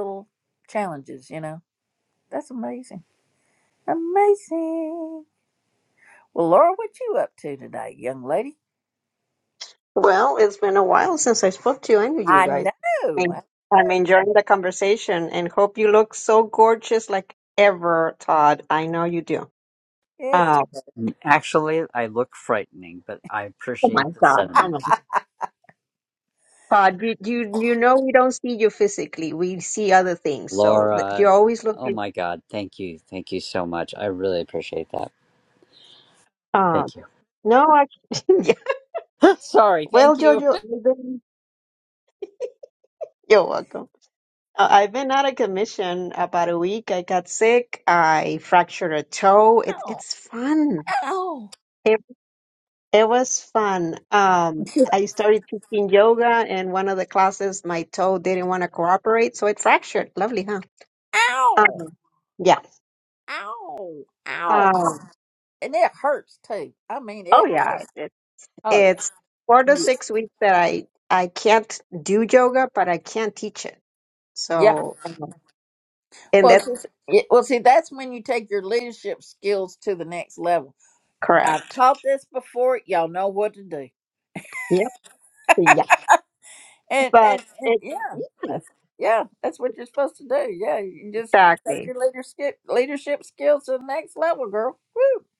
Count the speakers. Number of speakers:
3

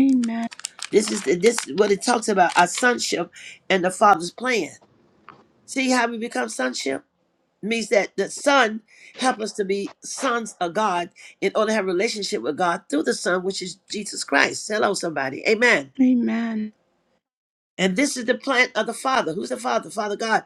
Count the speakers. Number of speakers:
2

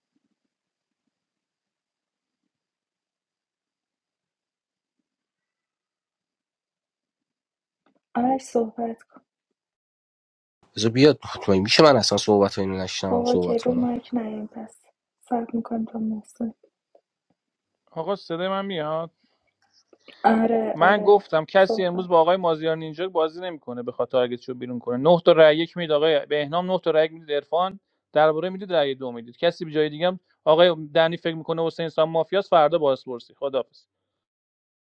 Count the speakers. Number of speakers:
3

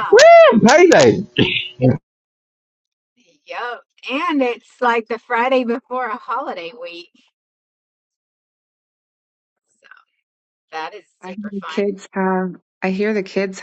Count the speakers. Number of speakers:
3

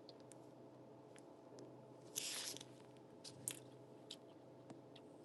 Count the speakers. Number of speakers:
0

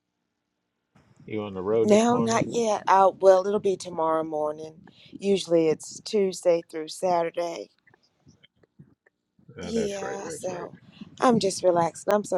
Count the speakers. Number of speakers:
2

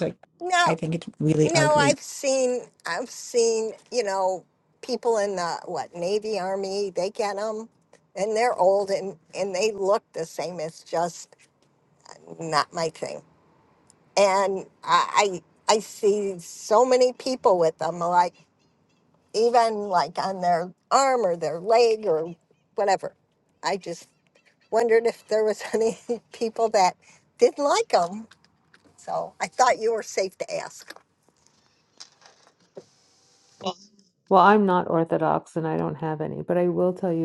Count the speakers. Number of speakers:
3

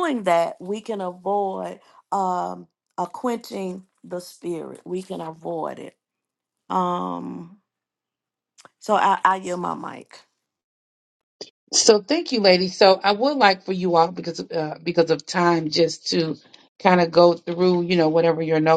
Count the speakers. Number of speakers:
2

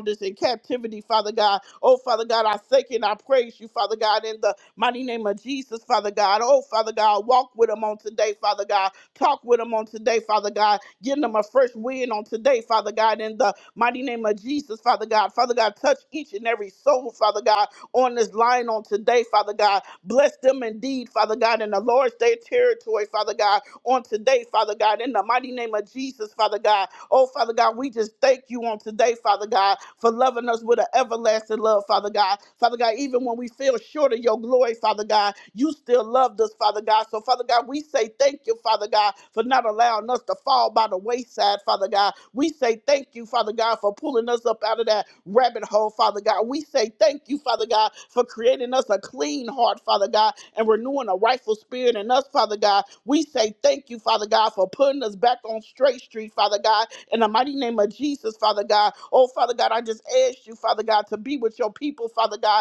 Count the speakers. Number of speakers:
1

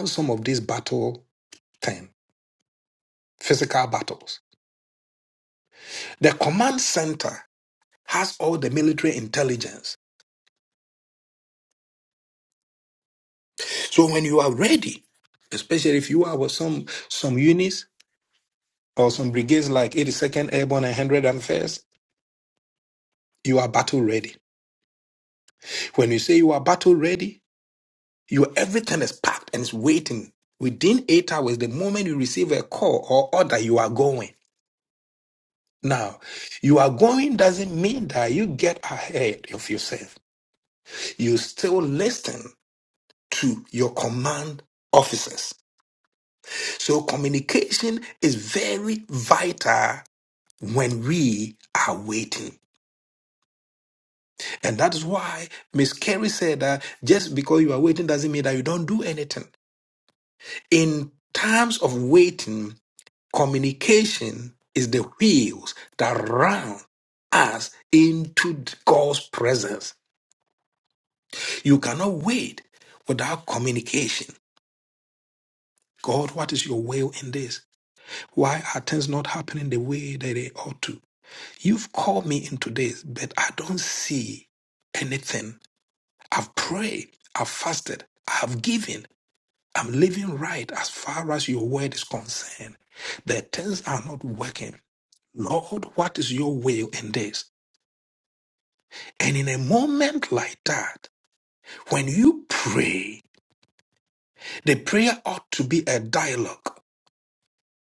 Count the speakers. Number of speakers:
1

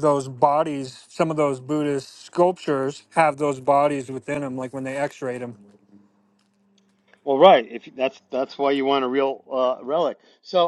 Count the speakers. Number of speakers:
2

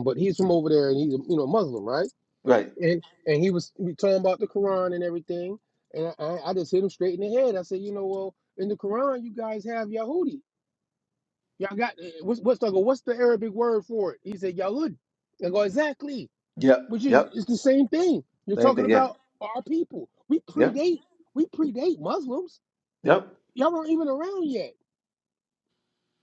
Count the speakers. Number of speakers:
2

